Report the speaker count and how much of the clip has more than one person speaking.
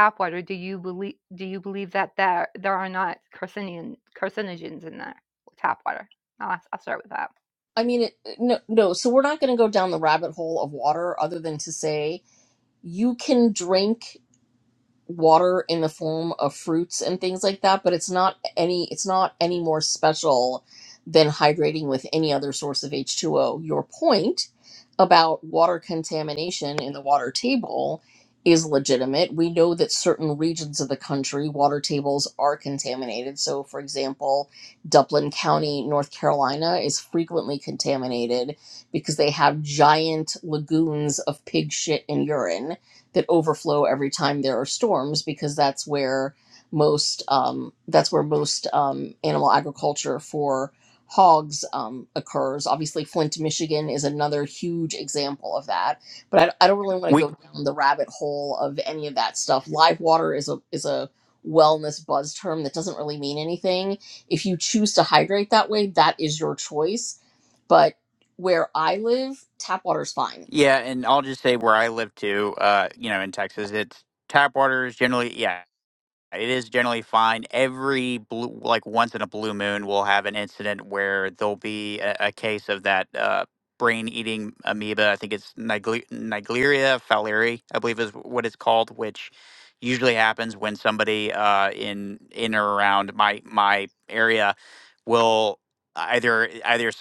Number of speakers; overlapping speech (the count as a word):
three, under 1%